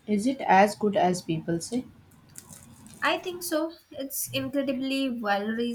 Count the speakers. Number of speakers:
two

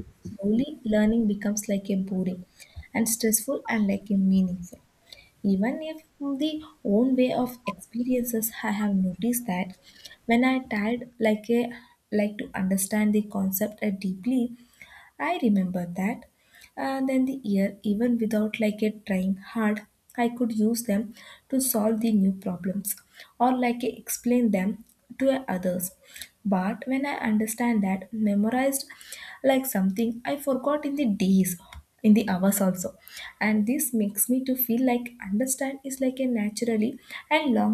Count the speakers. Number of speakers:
one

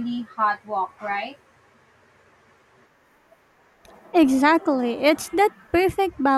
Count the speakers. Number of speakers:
two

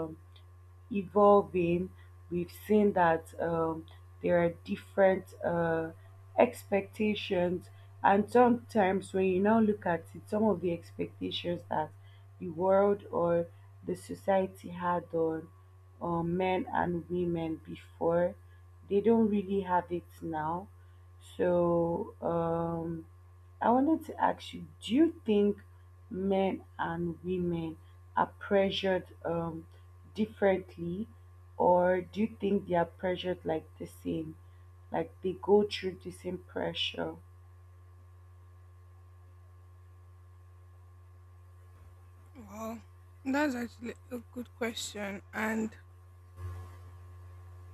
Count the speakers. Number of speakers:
two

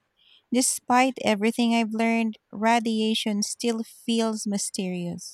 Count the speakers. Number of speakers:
one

